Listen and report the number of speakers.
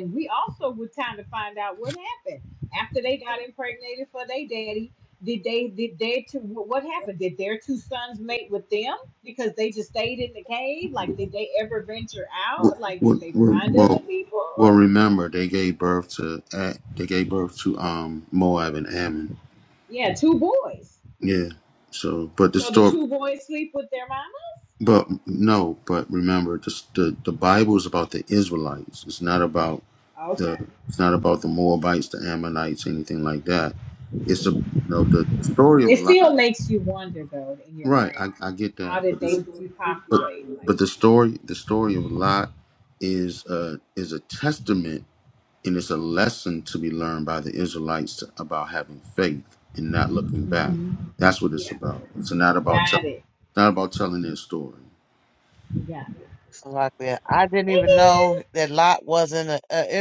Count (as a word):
three